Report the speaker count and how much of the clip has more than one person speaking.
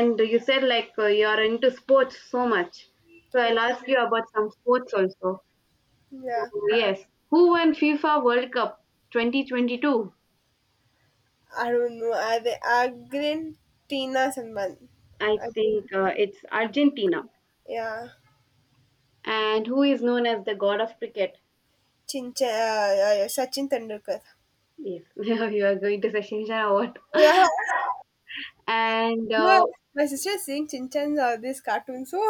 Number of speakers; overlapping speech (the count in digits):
2, about 4%